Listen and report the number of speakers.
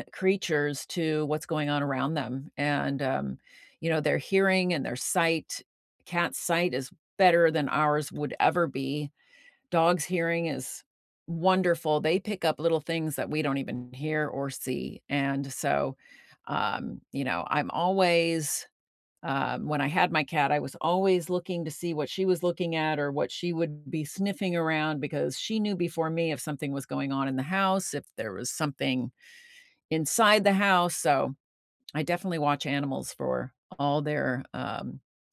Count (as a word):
one